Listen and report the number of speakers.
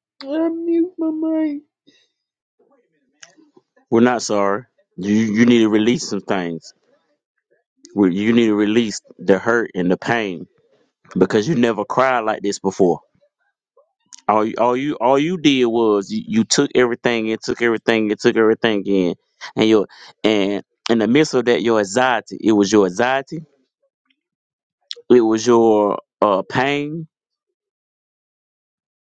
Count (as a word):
two